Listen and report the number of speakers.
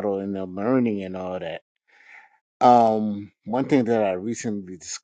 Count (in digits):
1